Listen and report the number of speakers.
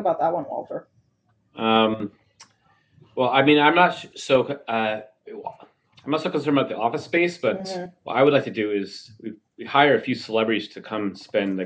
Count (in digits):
2